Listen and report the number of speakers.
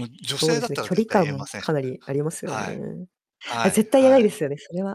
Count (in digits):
2